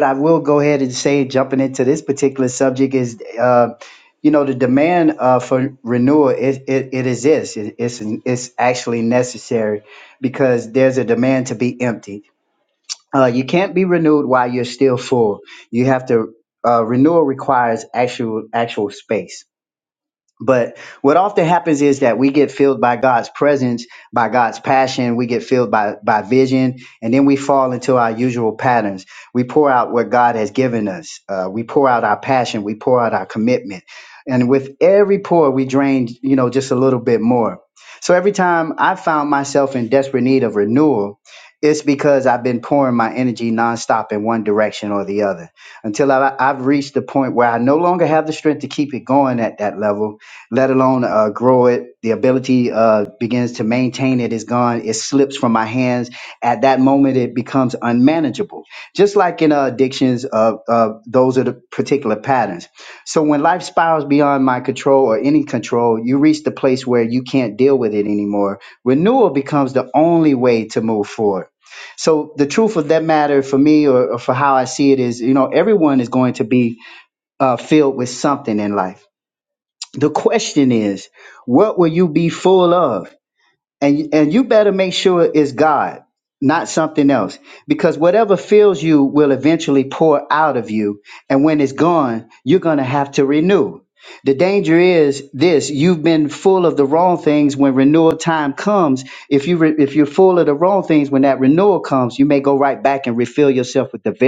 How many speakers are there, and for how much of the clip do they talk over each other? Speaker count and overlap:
1, no overlap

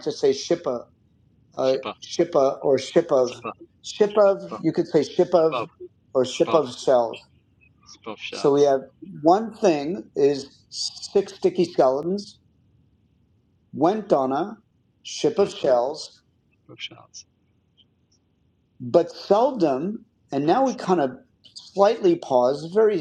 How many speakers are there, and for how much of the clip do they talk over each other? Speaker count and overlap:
2, about 7%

